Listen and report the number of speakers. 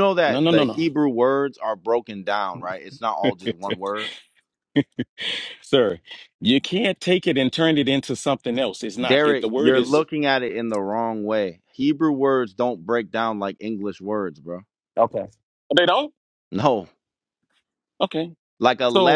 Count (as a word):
two